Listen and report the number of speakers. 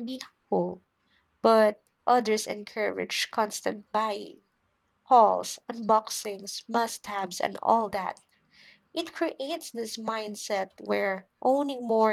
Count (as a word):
one